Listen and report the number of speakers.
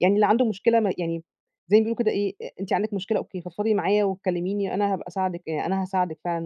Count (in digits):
1